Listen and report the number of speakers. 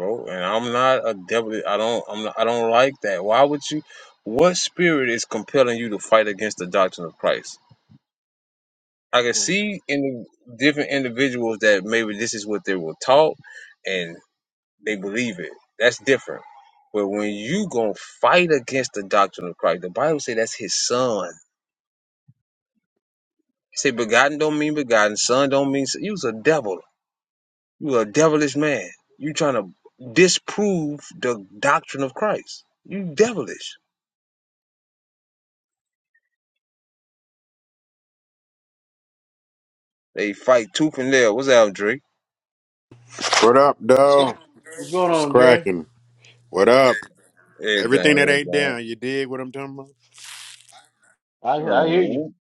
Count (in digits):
3